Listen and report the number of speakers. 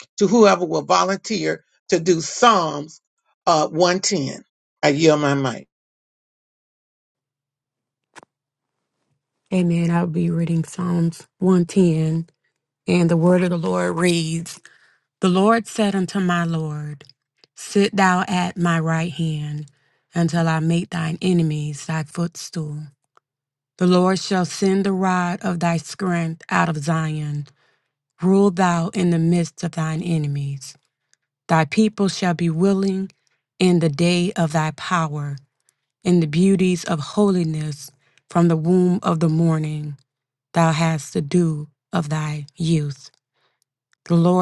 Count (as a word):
two